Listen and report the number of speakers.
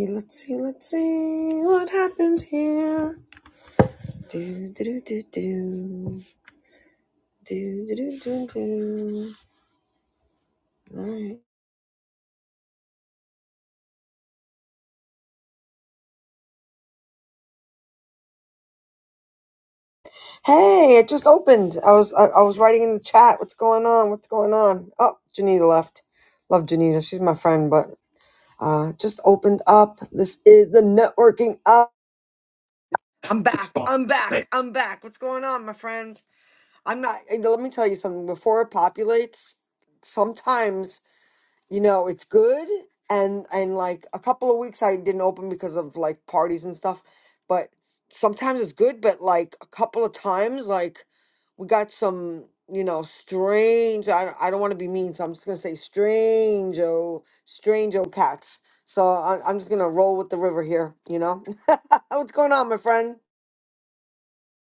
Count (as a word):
one